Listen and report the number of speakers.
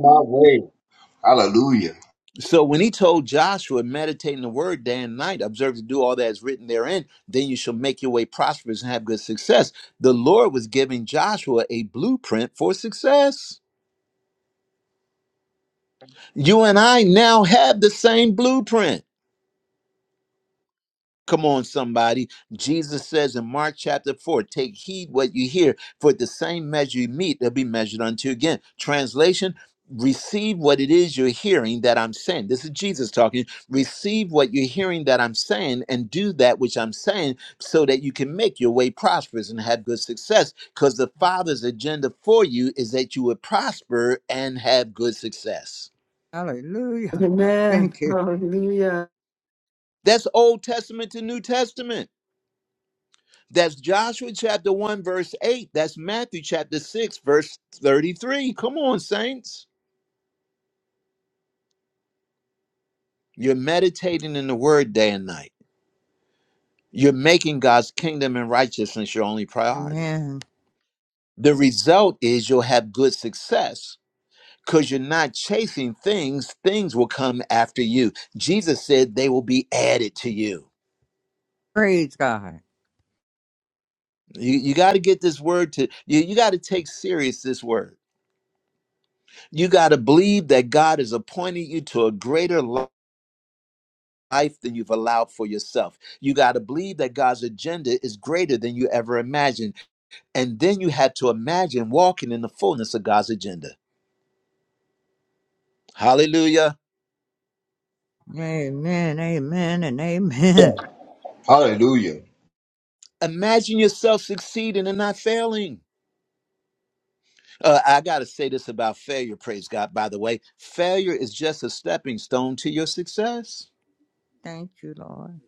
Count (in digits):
4